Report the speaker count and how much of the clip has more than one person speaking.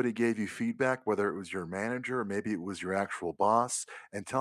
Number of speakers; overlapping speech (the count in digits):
1, no overlap